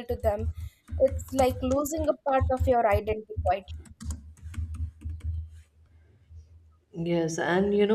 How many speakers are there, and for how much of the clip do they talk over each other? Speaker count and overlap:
2, no overlap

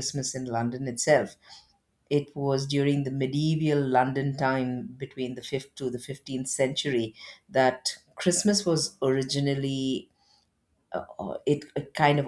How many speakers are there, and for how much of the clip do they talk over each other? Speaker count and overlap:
1, no overlap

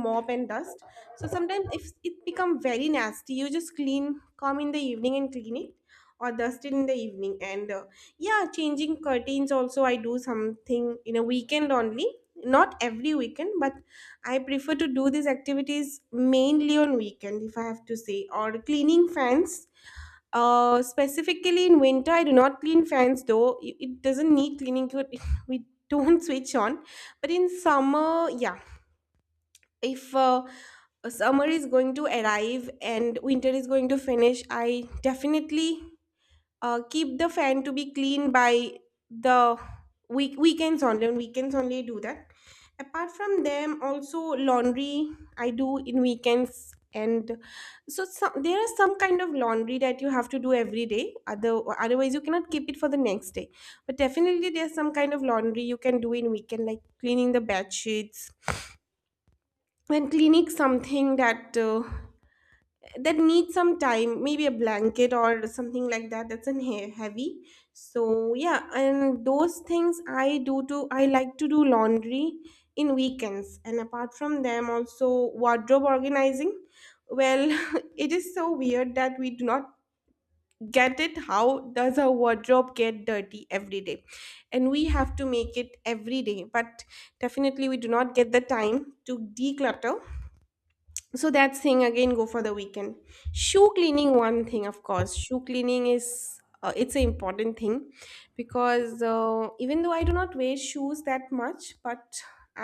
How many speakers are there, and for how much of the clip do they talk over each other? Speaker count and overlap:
1, no overlap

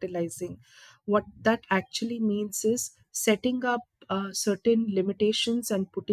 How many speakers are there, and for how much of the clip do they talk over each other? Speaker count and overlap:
1, no overlap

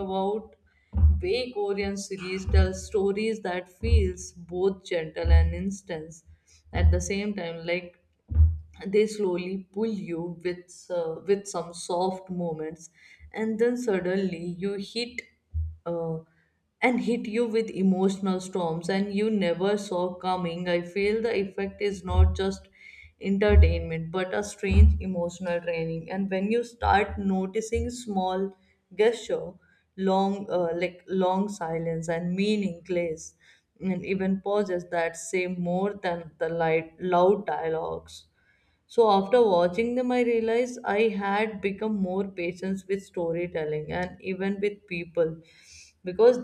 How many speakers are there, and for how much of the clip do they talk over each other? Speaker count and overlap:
1, no overlap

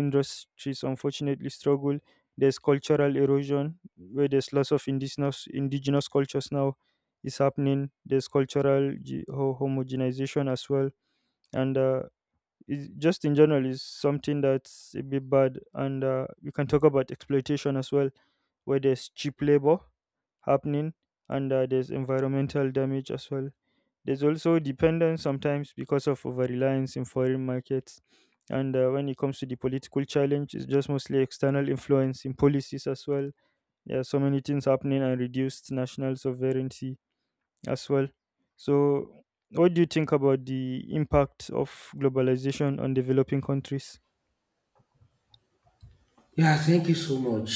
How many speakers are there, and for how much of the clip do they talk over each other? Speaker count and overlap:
2, no overlap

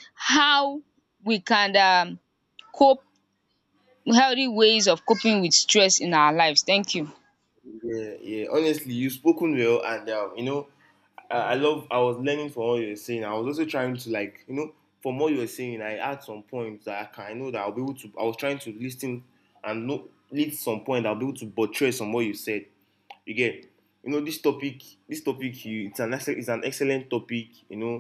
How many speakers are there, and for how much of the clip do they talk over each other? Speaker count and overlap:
2, no overlap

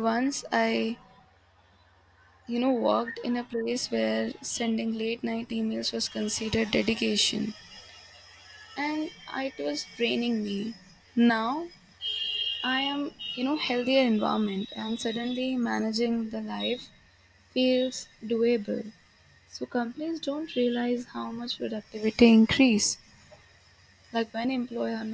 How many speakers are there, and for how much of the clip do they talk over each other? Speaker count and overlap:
1, no overlap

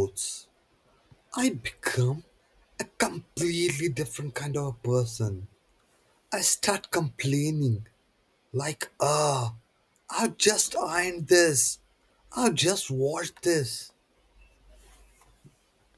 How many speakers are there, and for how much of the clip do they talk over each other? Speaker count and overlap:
1, no overlap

